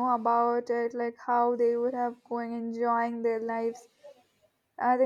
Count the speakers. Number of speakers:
1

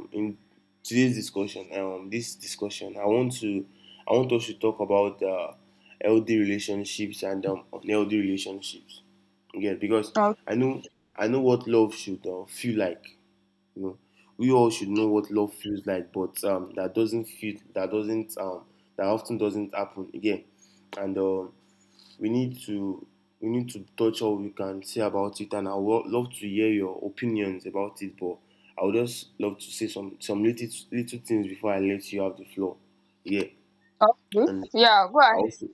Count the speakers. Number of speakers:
2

